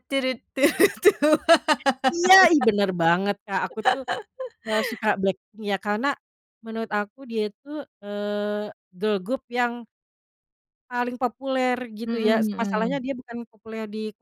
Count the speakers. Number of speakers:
two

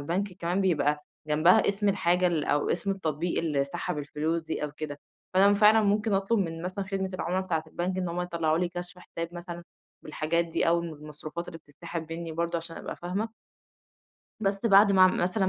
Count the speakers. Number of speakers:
one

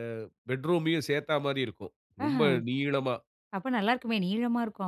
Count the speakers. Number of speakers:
two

